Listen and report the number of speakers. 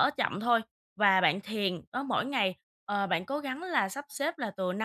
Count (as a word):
one